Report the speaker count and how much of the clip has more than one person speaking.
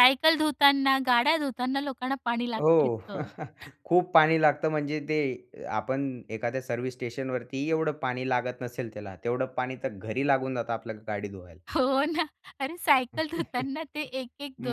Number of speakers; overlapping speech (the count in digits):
2, about 4%